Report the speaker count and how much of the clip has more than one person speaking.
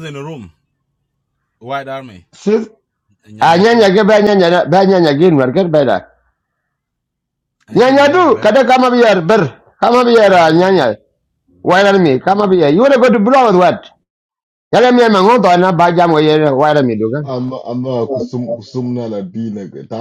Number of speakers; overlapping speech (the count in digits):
3, about 6%